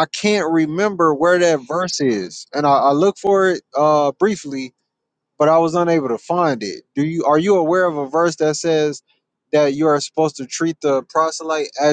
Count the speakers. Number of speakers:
1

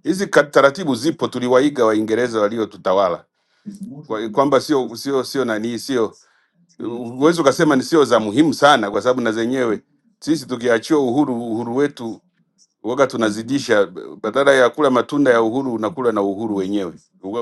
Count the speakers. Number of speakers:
1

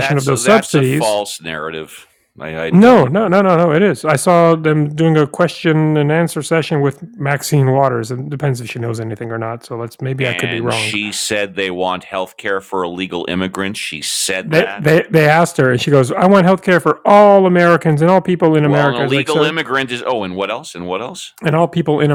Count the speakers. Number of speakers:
2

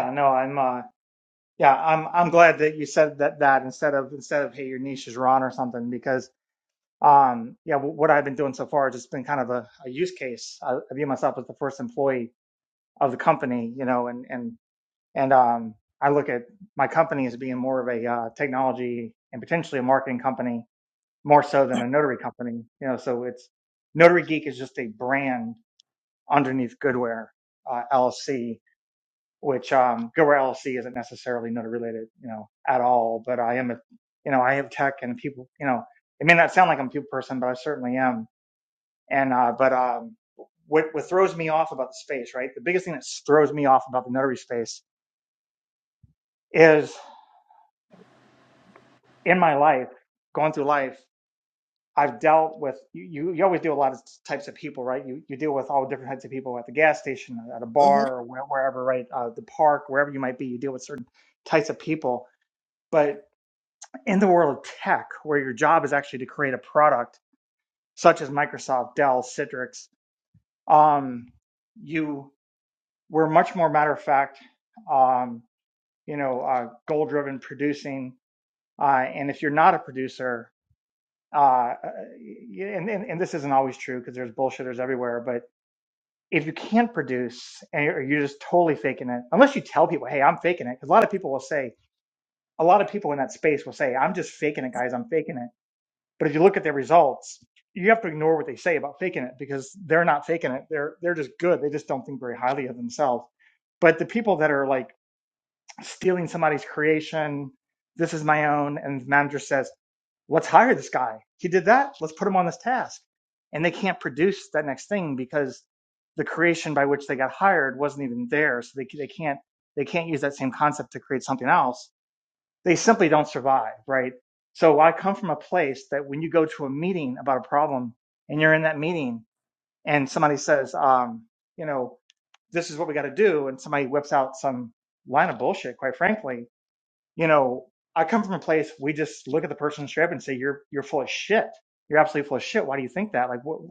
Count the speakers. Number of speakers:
1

